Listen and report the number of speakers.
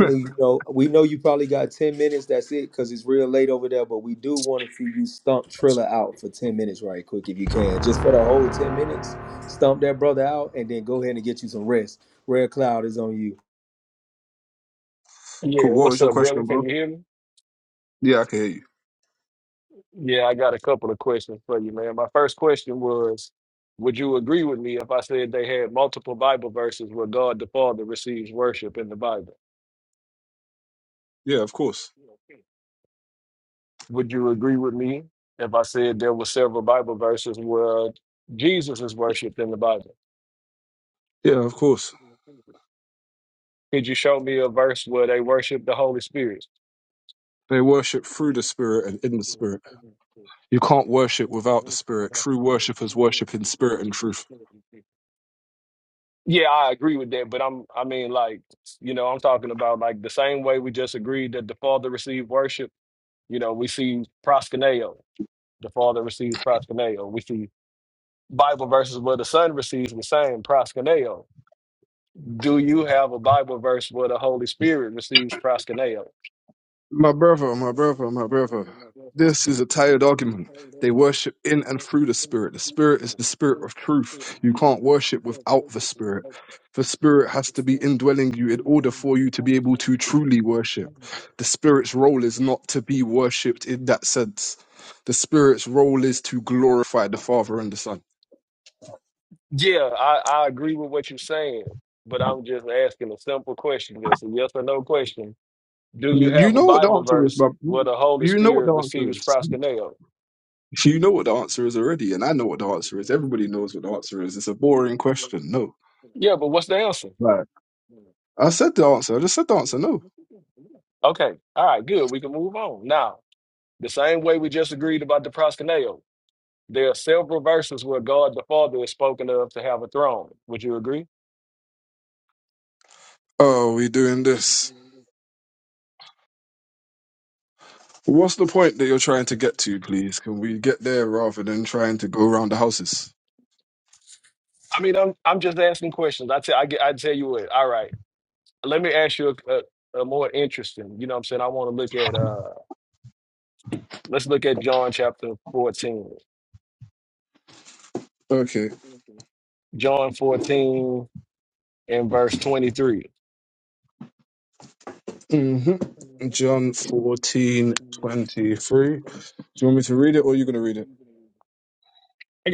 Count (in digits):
3